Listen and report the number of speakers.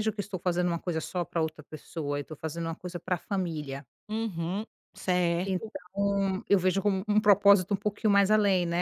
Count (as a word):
two